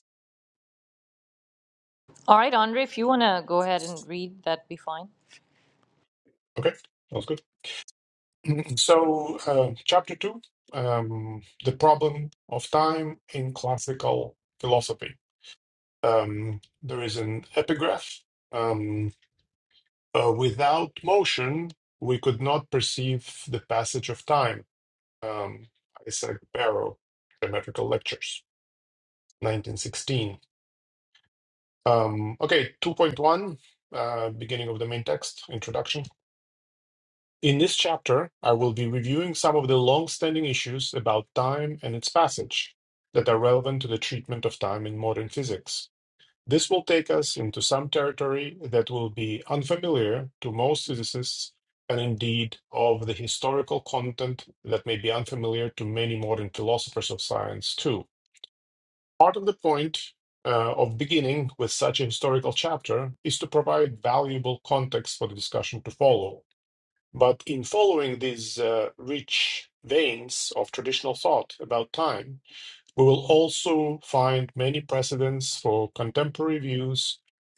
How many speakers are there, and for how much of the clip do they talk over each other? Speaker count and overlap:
two, no overlap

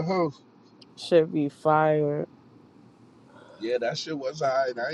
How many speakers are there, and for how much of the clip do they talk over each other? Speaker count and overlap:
two, no overlap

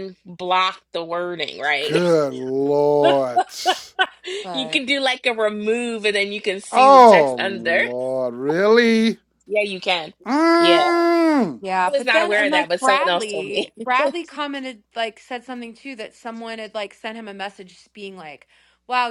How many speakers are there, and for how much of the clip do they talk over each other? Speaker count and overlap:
three, about 19%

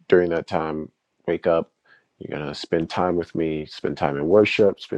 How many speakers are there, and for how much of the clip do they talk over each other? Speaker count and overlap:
one, no overlap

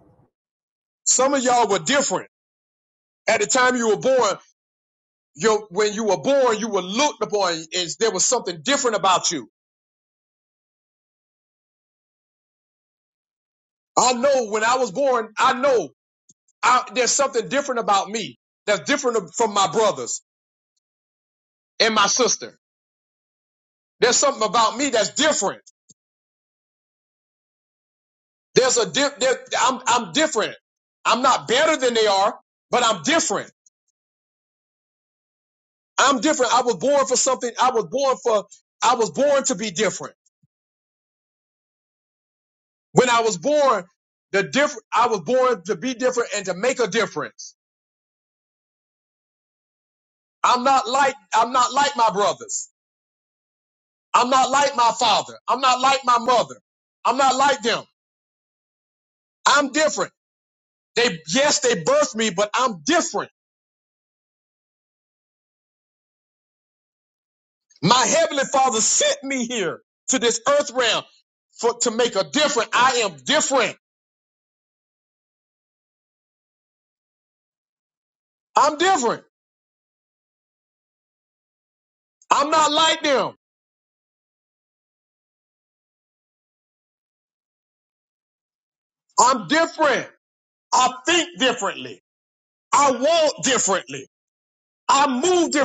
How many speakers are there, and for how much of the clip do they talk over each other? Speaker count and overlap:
one, no overlap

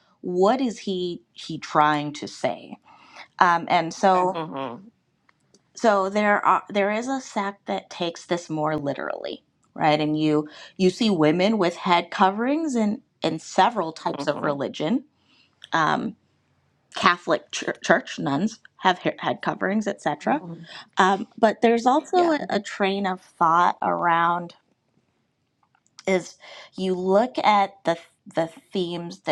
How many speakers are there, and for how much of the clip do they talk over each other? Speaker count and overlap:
two, about 2%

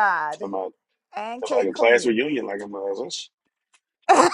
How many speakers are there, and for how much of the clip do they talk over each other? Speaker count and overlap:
two, about 19%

